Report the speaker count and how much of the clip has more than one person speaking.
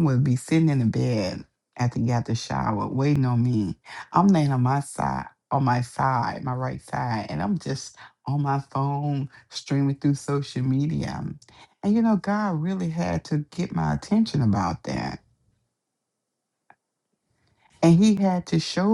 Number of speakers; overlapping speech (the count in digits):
1, no overlap